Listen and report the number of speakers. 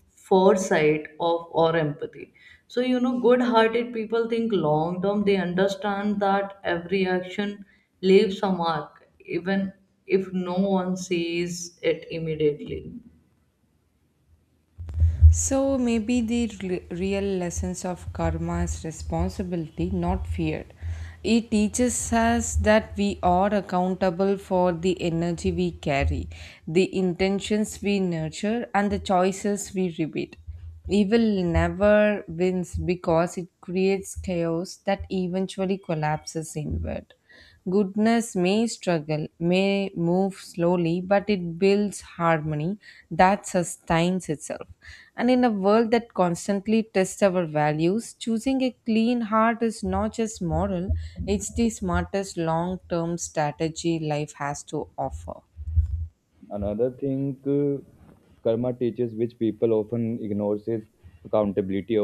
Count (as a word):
three